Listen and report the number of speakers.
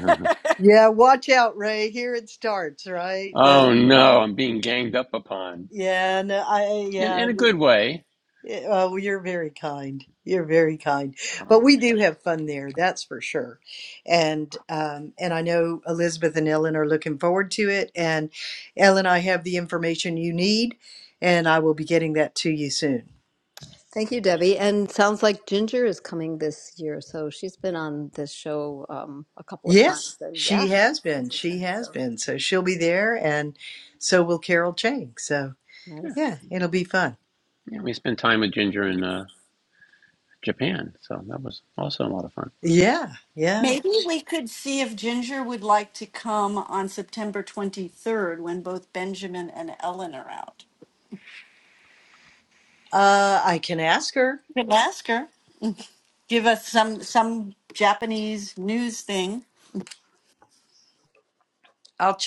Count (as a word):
four